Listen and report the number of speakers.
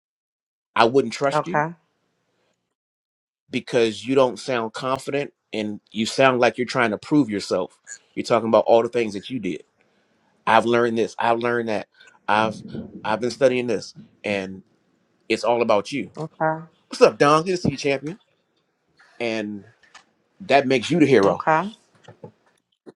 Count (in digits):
2